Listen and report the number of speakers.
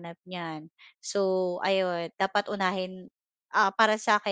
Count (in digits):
1